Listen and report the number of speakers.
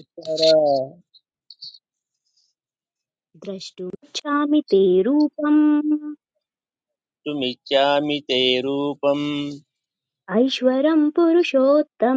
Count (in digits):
2